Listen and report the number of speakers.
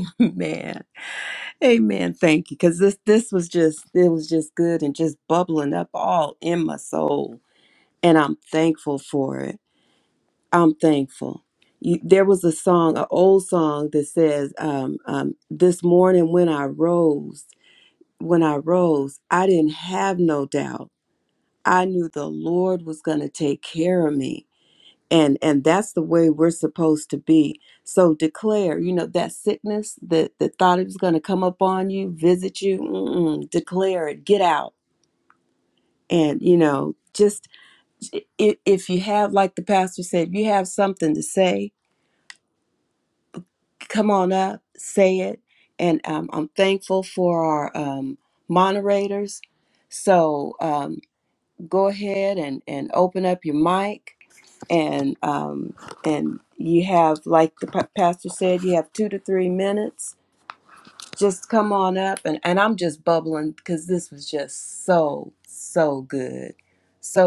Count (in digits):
1